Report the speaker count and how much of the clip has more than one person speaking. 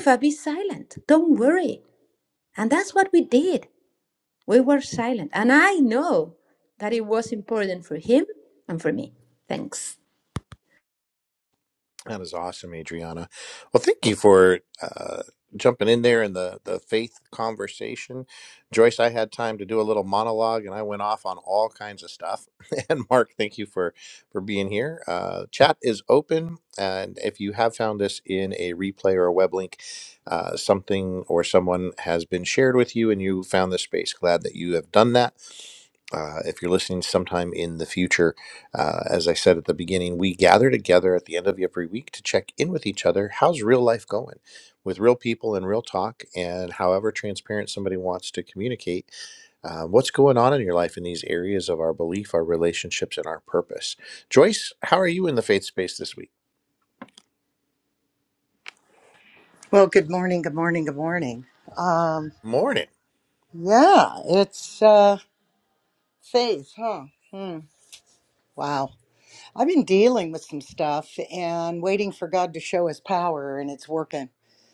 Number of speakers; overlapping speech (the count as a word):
three, no overlap